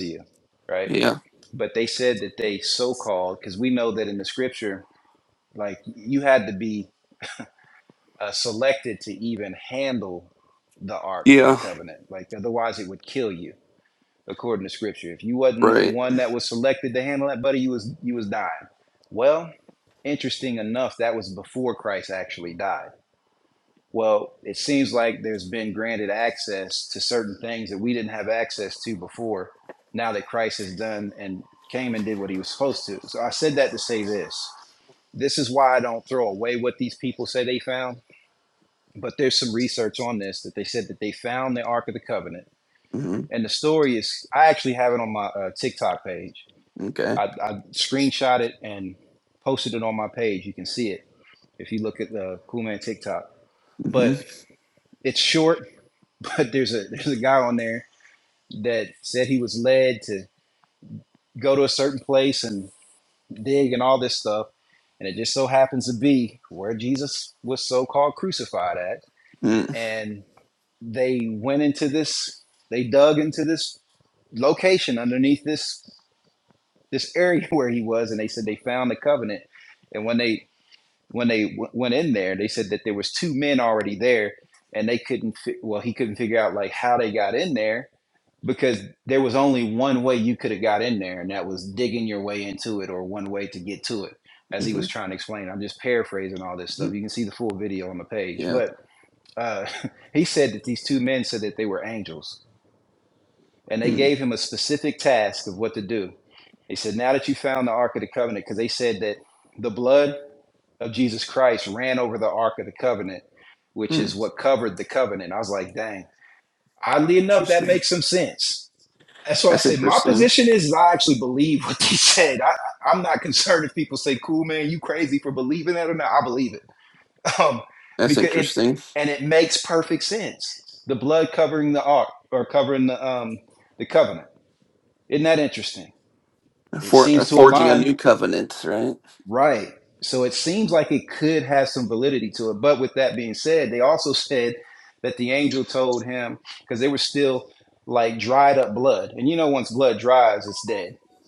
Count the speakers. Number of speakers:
two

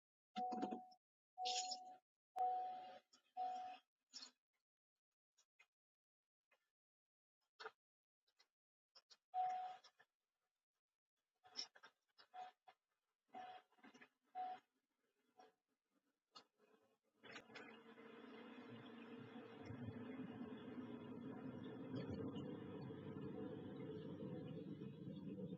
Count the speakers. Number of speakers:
zero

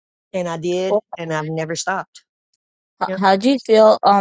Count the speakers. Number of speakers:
two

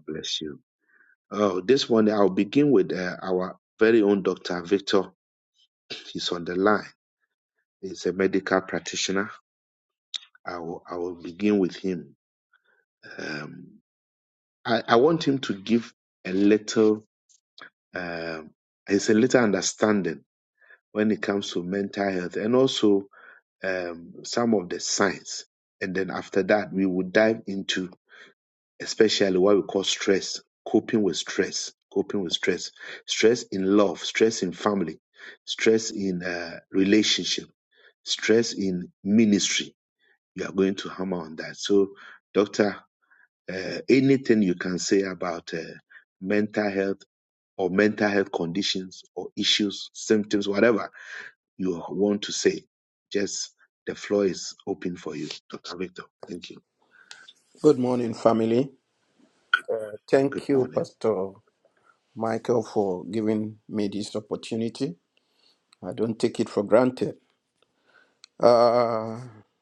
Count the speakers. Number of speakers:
two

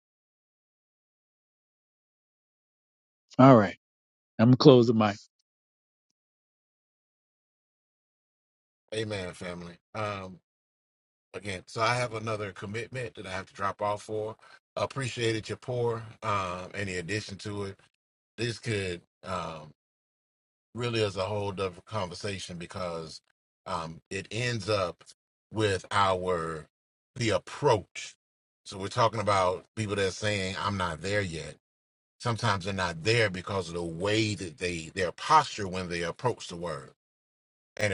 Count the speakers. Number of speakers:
two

